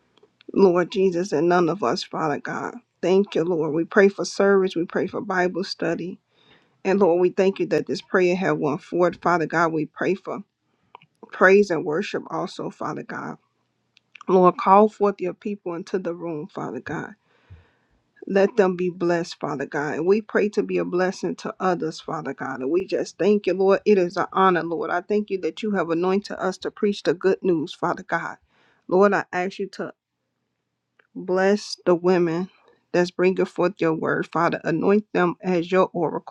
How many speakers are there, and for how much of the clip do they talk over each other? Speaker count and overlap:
1, no overlap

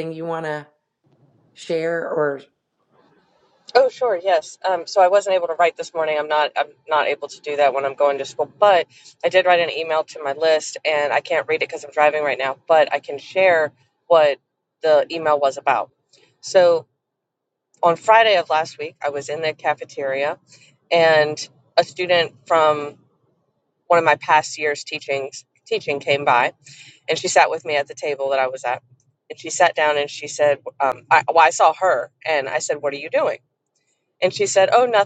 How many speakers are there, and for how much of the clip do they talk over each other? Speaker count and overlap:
2, no overlap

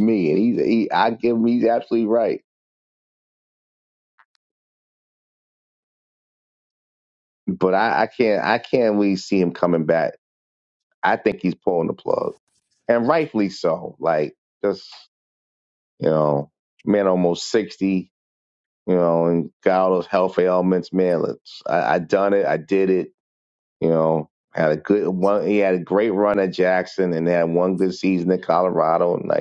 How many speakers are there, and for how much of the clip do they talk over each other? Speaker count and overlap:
1, no overlap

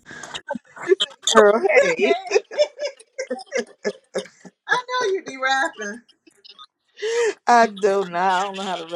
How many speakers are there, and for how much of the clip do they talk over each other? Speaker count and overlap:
2, about 2%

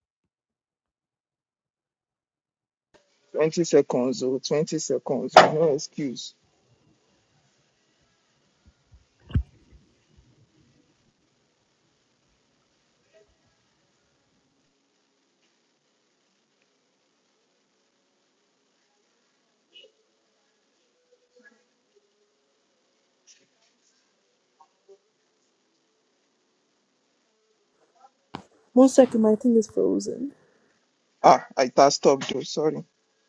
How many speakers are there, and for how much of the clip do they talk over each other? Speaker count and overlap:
2, no overlap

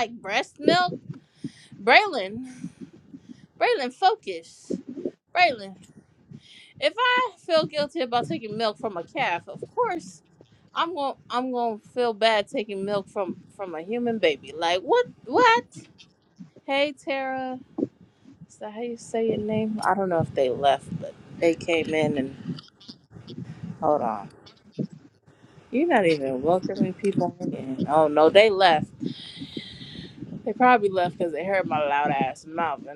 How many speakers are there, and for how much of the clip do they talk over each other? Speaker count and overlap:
1, no overlap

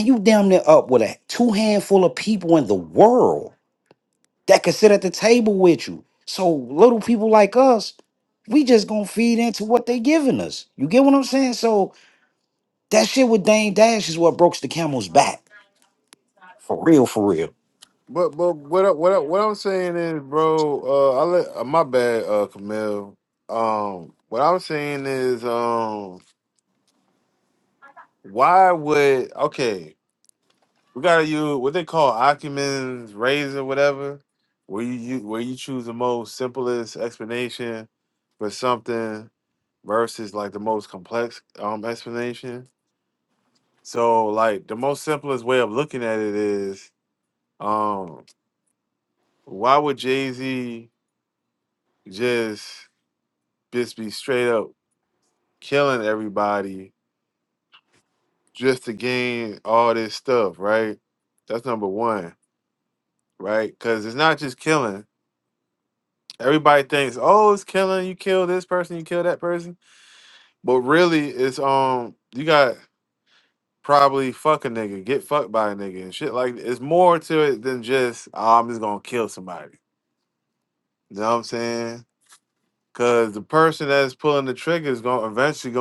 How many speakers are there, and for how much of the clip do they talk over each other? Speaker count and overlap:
2, no overlap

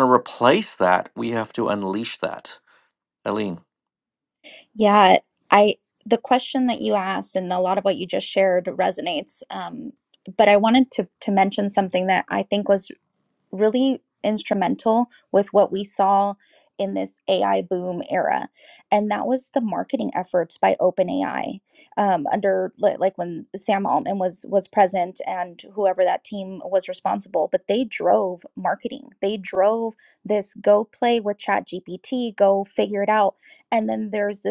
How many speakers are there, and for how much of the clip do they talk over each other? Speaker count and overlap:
2, no overlap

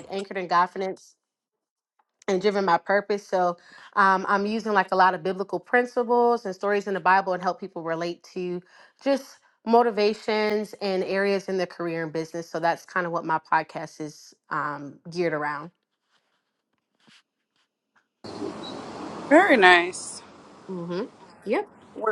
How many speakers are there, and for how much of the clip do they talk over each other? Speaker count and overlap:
2, no overlap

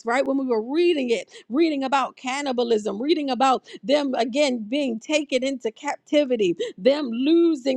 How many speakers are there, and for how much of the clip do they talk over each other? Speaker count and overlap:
1, no overlap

